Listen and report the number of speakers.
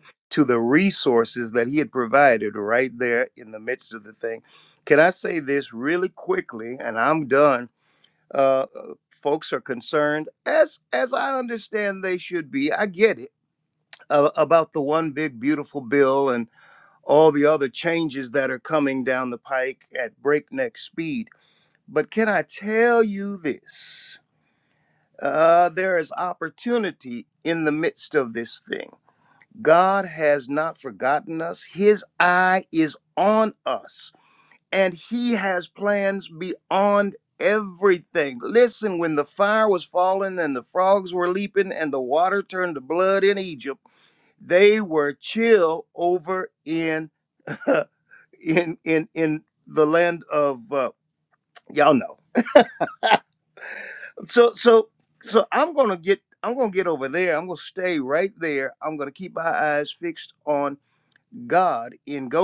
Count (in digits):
1